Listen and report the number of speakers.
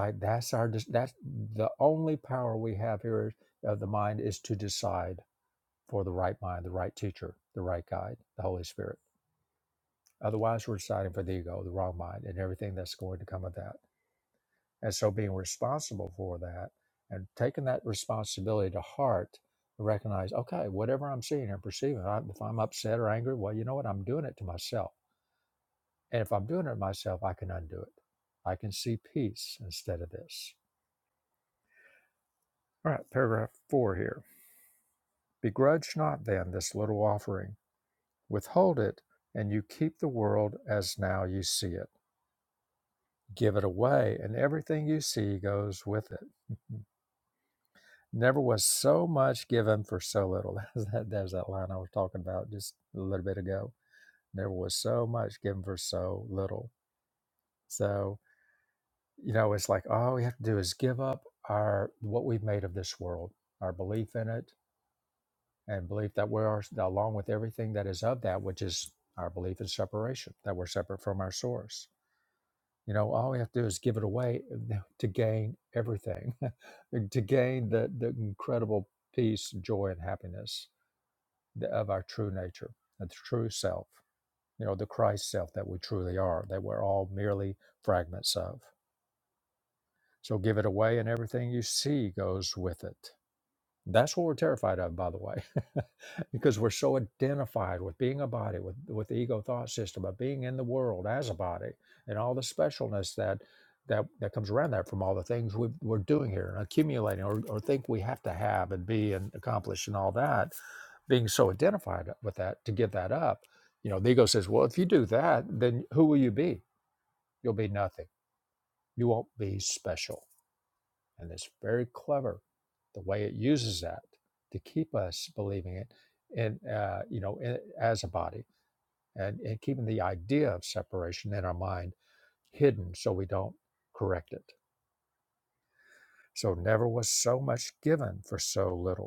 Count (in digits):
1